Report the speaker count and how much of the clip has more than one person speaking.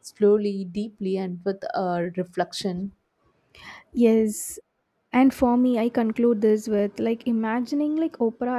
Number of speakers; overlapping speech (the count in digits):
2, no overlap